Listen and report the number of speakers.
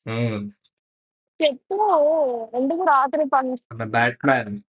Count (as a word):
two